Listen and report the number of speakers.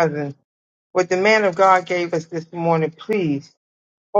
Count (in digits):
1